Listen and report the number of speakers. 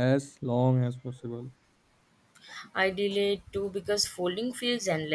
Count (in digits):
2